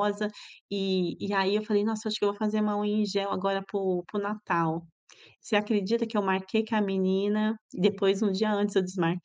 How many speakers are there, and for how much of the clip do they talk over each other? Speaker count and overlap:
1, no overlap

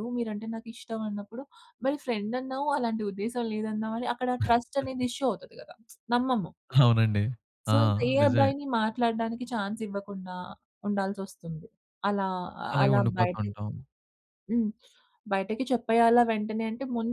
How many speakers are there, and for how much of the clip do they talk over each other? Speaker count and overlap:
2, about 9%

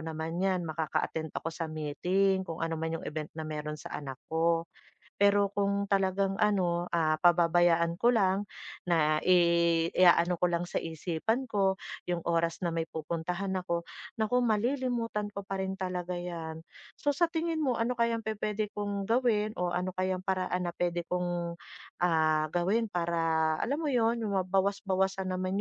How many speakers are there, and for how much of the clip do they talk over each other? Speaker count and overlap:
1, no overlap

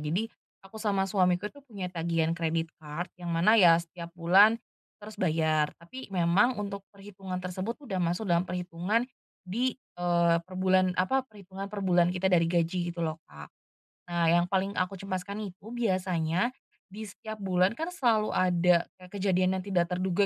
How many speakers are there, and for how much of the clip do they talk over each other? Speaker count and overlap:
1, no overlap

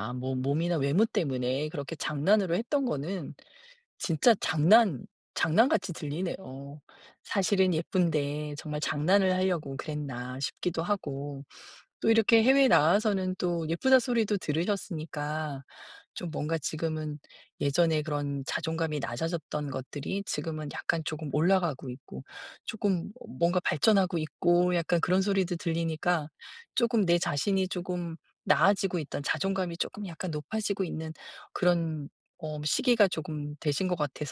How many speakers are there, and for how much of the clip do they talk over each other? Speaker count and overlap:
1, no overlap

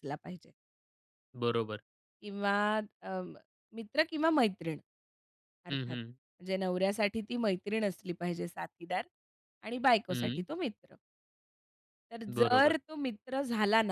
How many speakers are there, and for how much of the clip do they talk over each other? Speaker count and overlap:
2, about 7%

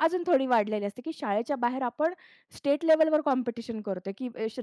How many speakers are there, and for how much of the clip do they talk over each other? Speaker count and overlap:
1, no overlap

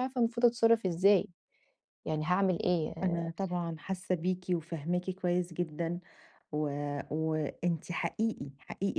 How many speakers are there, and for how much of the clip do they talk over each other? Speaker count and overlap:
2, about 3%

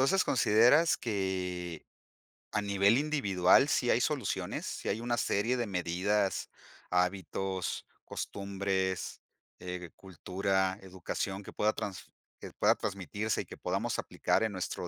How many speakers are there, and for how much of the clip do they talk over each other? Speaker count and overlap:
1, no overlap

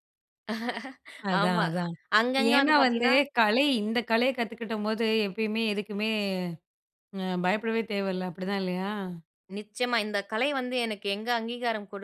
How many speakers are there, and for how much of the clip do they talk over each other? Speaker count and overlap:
2, about 8%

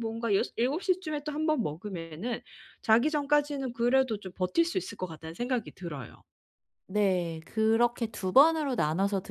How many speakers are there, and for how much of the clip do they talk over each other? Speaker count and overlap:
2, no overlap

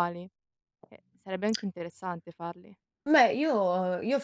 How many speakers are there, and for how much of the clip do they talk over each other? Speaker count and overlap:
2, no overlap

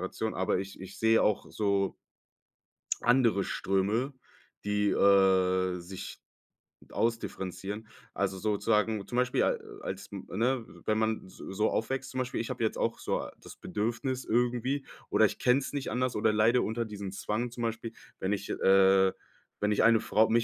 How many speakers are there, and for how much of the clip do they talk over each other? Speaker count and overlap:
1, no overlap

